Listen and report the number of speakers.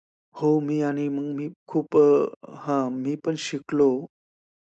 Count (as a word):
one